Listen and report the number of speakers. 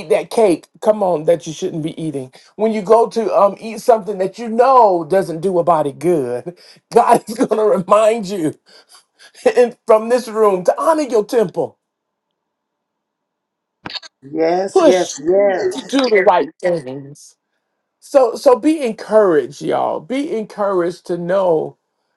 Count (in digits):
2